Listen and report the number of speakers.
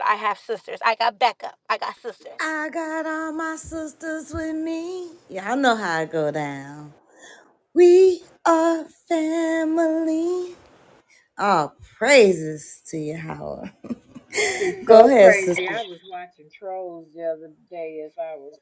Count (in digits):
3